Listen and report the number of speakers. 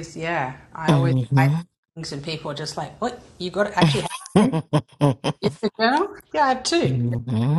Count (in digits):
2